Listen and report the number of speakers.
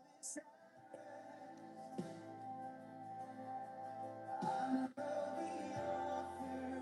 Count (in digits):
0